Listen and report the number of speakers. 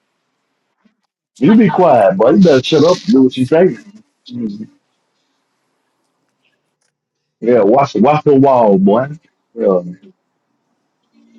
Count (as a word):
one